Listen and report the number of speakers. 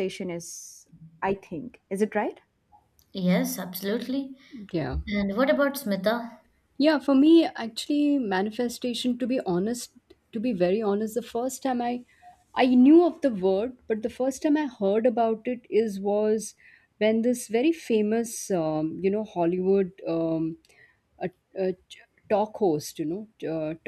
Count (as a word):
three